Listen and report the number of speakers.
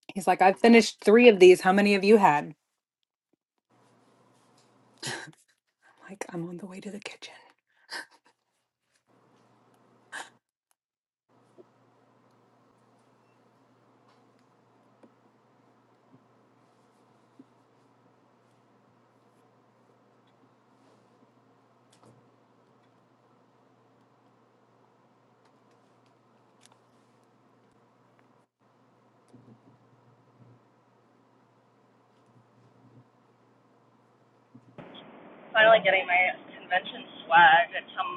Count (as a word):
two